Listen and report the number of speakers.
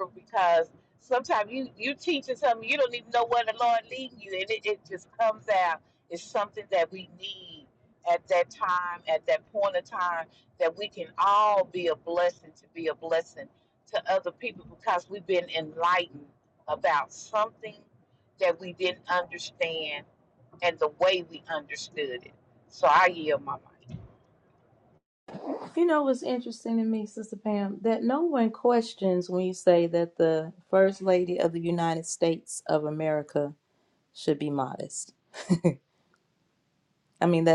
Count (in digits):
2